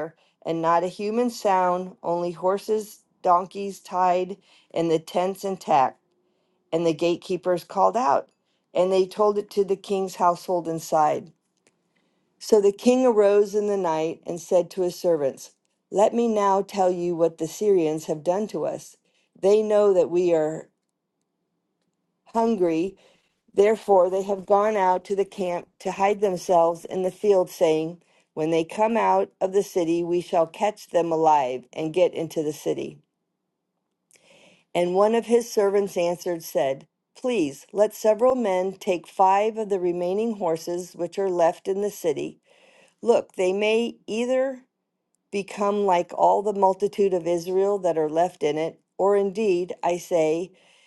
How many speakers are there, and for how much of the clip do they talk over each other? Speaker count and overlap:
one, no overlap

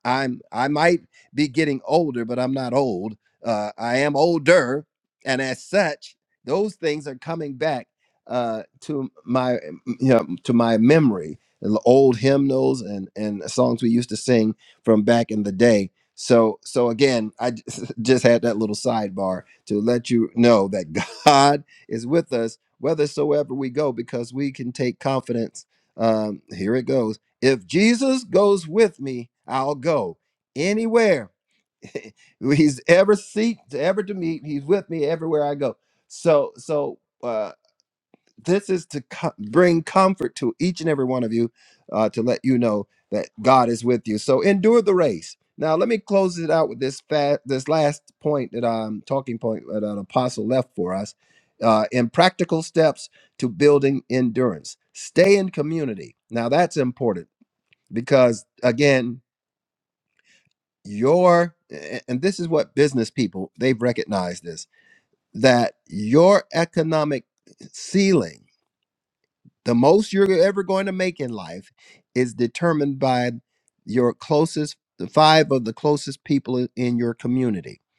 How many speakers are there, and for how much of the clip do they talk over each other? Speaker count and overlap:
one, no overlap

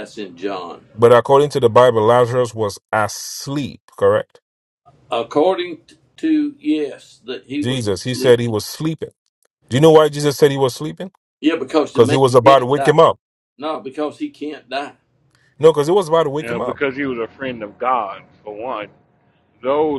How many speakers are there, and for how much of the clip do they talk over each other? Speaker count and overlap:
three, about 10%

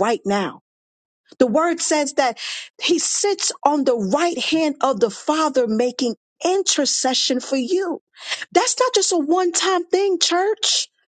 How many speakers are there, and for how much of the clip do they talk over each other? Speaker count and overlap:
one, no overlap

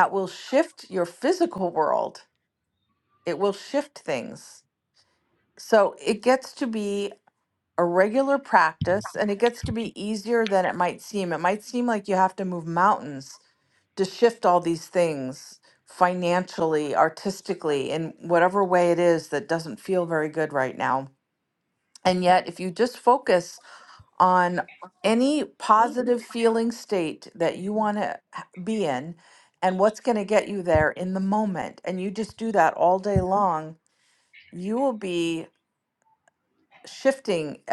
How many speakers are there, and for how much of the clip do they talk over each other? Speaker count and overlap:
one, no overlap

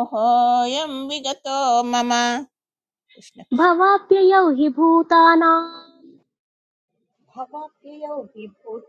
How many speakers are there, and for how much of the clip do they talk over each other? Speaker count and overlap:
three, no overlap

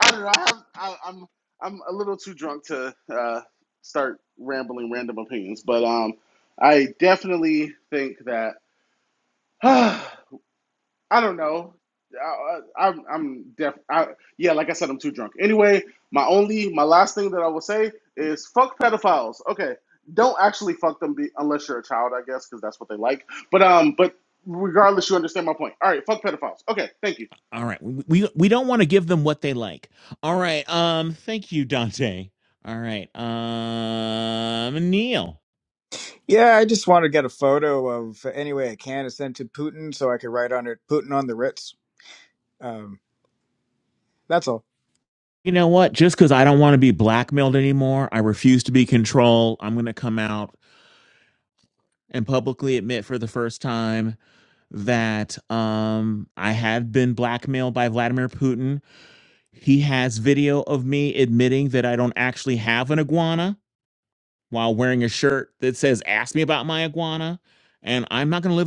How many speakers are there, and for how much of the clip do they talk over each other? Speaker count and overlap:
three, no overlap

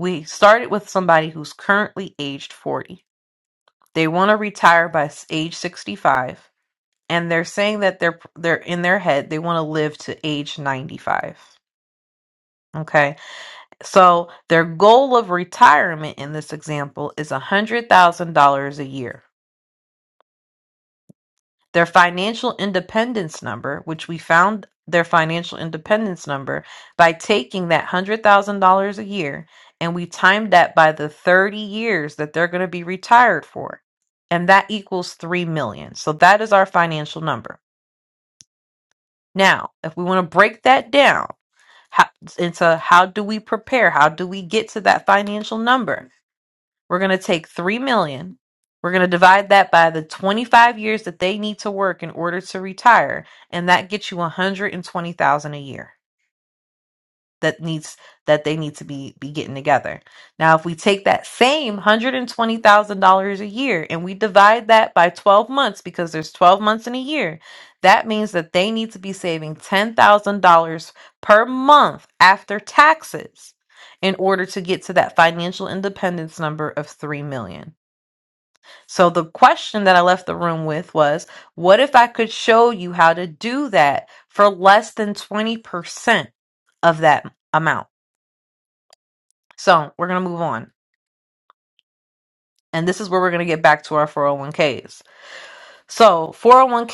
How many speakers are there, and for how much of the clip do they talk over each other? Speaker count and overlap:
one, no overlap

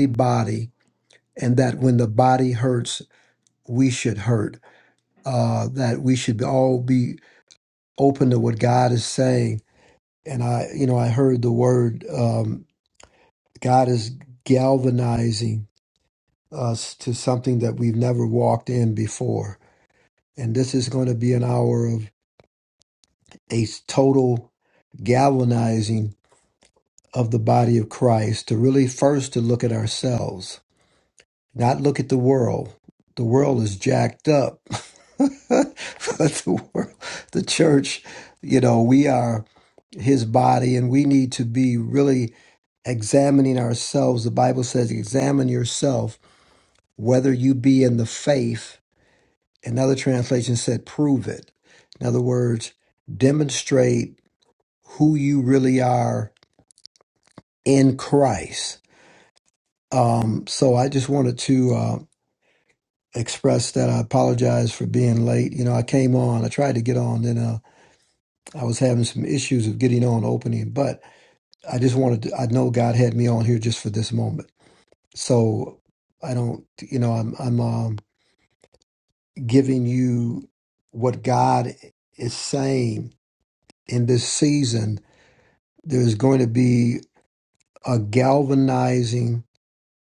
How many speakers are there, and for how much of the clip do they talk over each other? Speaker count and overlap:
one, no overlap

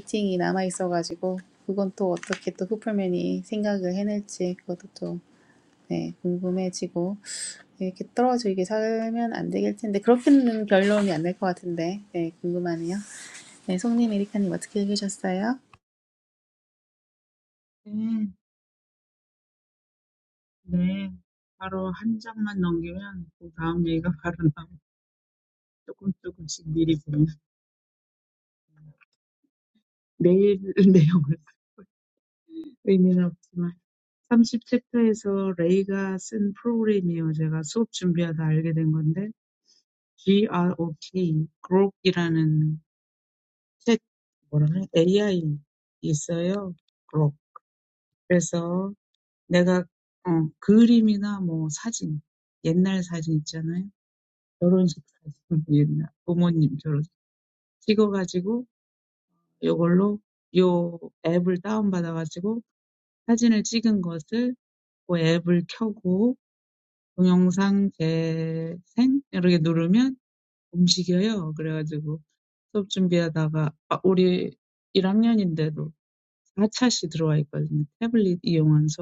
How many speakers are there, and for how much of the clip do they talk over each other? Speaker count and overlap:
two, no overlap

